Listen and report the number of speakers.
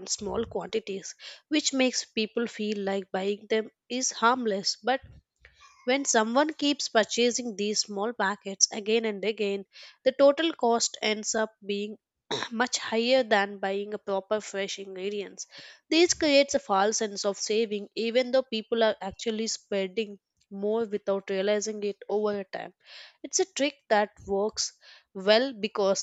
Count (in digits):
1